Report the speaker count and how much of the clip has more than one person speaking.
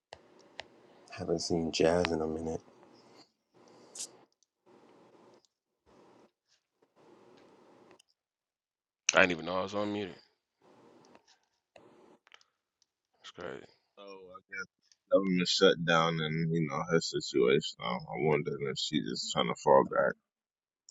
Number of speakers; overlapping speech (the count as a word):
three, no overlap